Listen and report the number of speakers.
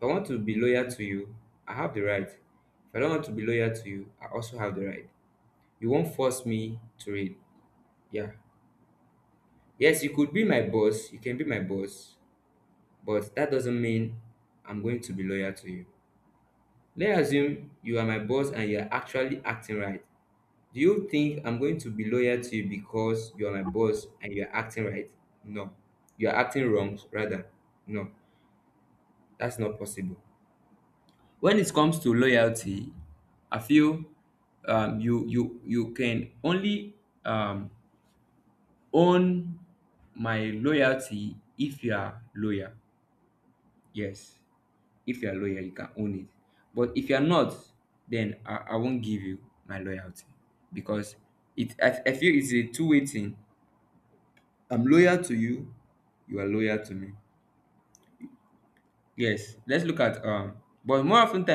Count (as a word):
one